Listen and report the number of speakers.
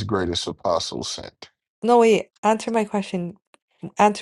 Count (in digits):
2